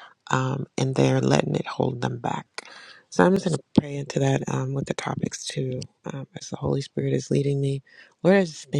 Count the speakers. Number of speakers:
1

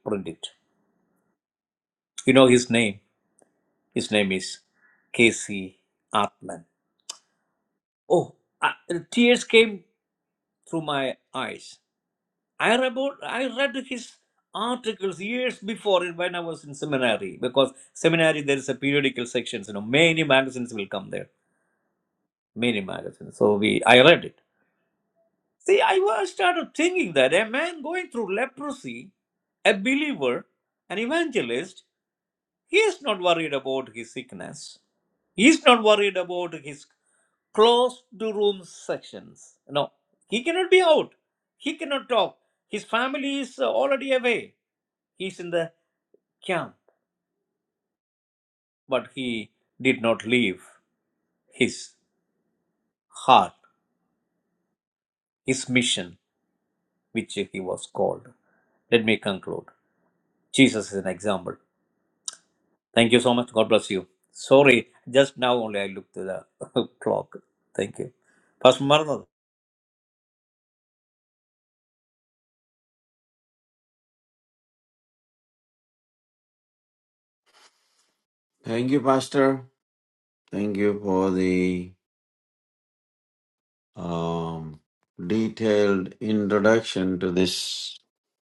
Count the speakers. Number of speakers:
2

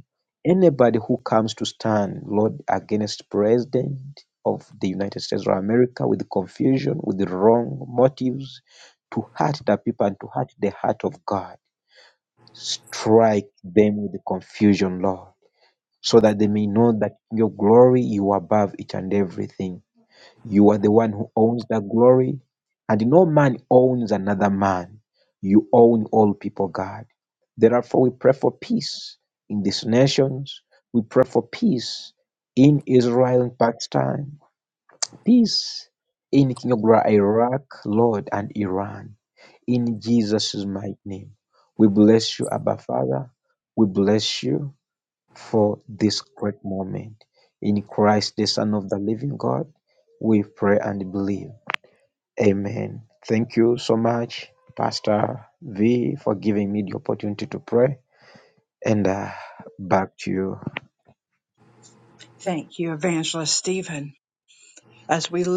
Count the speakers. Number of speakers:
2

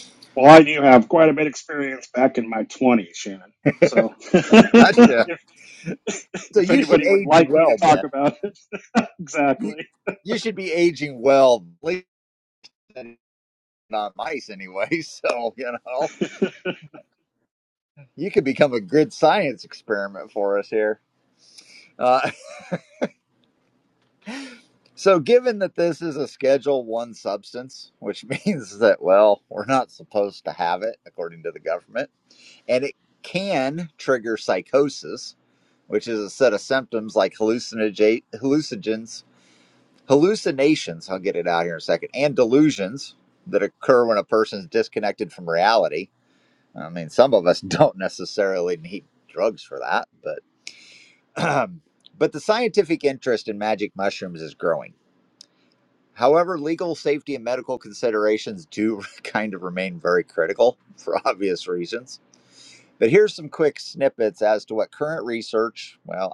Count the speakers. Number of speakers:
2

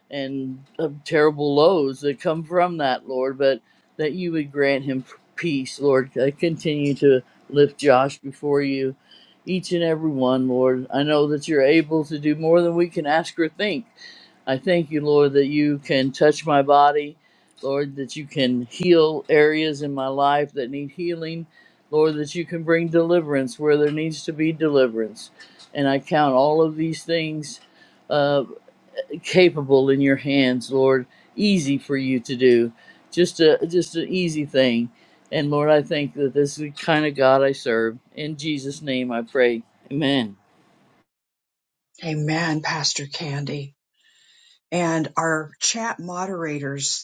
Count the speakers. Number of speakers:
2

